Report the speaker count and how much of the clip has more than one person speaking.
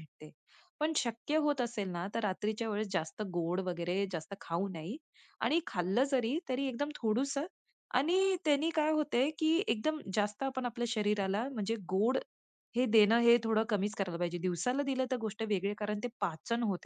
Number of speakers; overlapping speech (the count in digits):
1, no overlap